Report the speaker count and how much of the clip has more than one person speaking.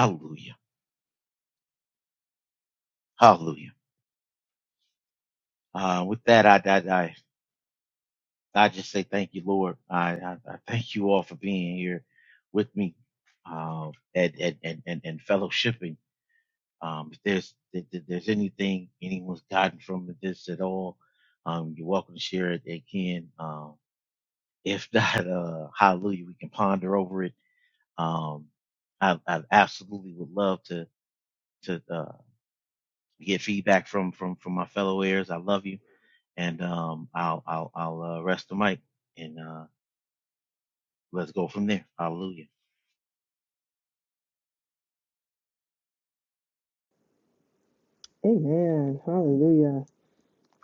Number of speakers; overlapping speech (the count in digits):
2, no overlap